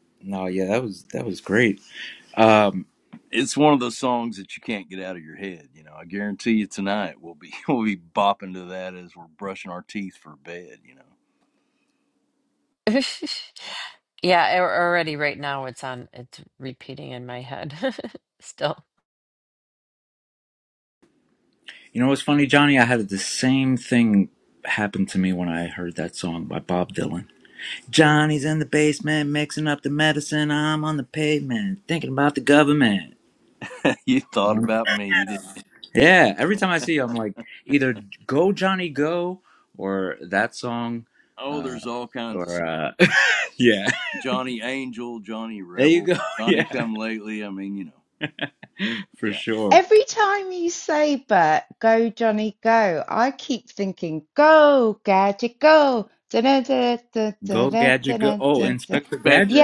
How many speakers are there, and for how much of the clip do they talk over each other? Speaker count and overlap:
4, about 6%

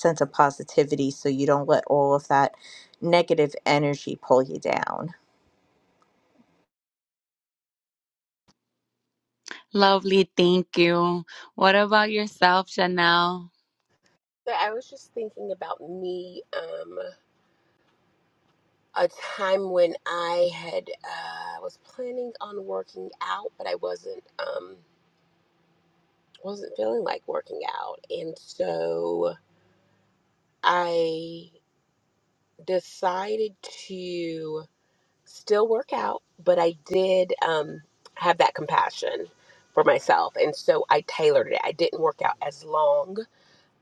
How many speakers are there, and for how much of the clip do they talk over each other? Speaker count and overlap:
3, no overlap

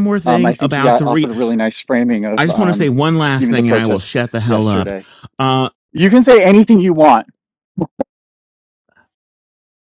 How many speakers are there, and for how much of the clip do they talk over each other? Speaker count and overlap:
2, about 26%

